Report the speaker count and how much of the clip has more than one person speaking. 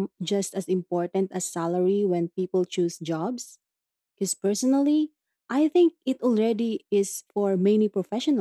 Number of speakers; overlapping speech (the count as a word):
one, no overlap